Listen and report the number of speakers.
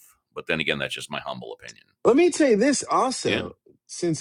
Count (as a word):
two